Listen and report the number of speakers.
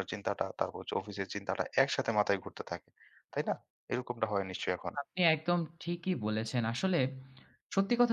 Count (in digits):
2